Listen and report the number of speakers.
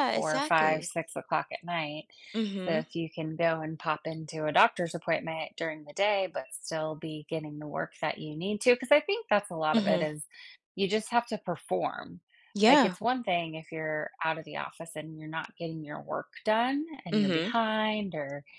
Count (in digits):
2